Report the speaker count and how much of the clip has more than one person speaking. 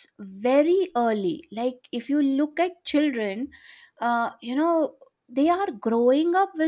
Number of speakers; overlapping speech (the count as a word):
one, no overlap